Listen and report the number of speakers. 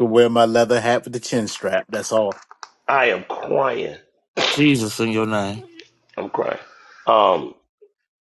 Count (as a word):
three